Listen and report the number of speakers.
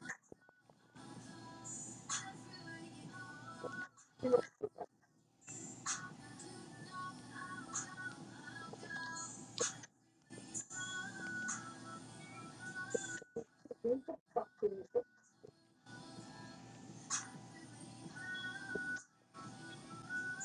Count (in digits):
0